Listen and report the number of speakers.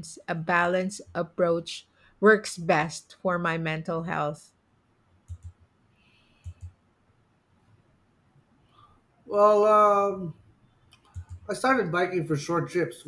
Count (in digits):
2